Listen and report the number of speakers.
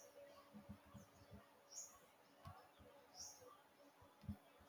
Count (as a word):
zero